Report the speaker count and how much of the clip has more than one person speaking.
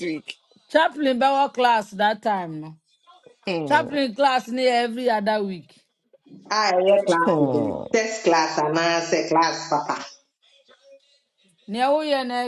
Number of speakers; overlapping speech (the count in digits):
3, about 7%